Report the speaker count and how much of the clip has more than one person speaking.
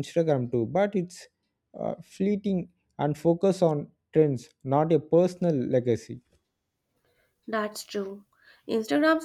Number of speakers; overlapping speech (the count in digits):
2, no overlap